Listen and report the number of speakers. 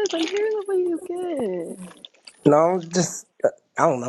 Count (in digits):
2